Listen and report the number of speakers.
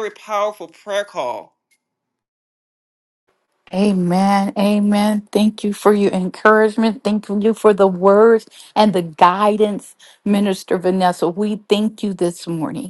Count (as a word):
two